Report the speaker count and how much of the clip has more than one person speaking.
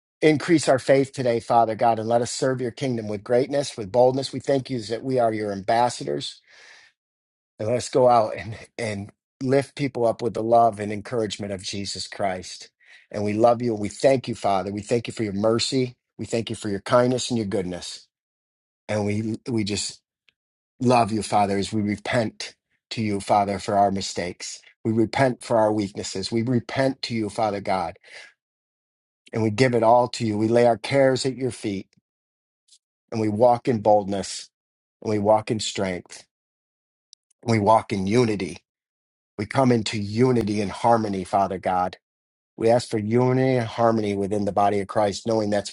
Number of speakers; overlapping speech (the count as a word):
one, no overlap